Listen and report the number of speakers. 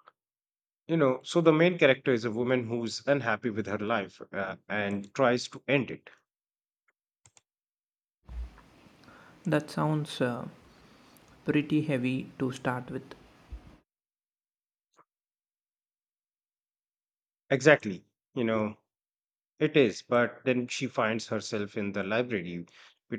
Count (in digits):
2